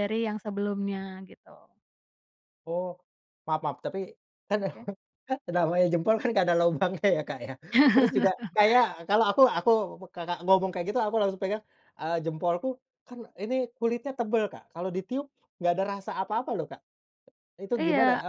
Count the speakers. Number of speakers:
two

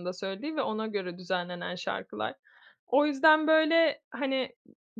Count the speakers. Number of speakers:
one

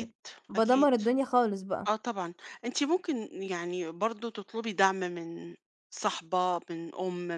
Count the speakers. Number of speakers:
two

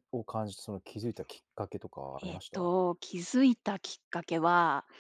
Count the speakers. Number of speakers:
two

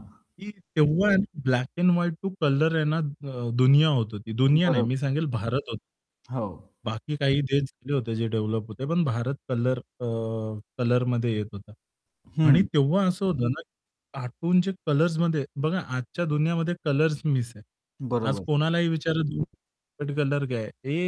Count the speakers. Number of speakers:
two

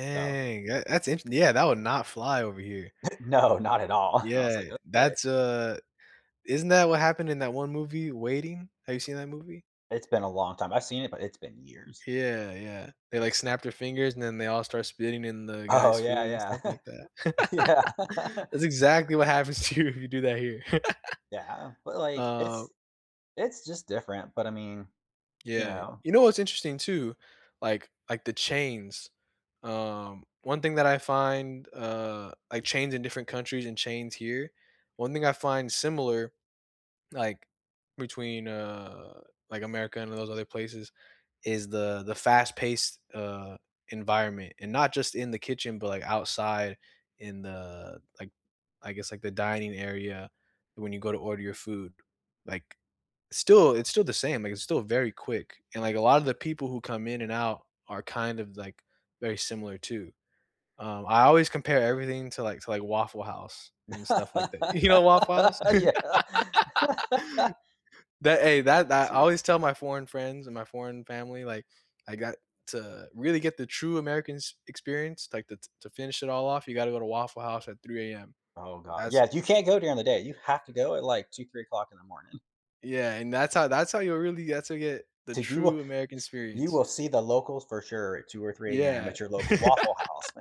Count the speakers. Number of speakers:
two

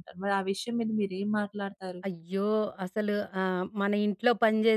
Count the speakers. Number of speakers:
two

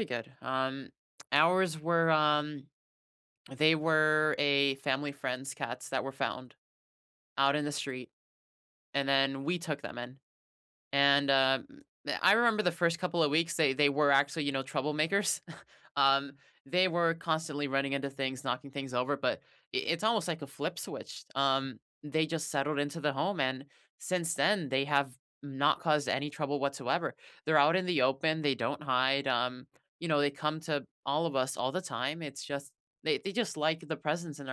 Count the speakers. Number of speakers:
one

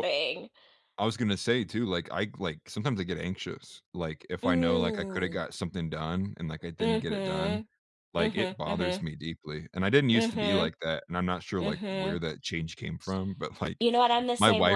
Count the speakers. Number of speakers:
two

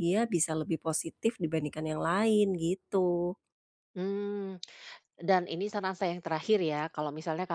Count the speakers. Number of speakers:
two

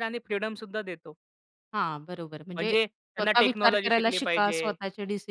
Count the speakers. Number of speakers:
two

